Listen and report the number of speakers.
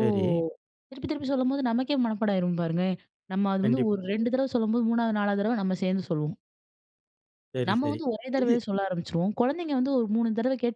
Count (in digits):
2